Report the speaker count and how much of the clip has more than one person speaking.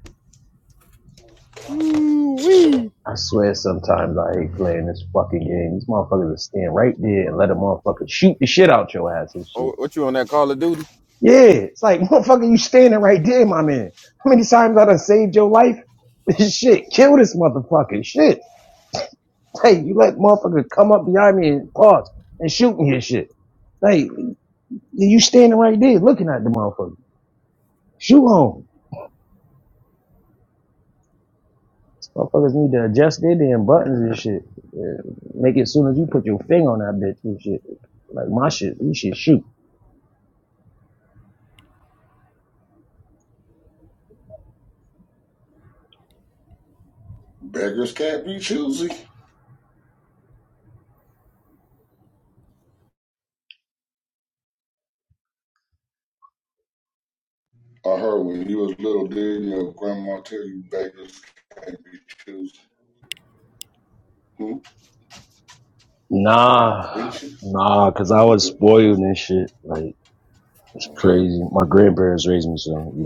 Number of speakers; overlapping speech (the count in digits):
3, about 1%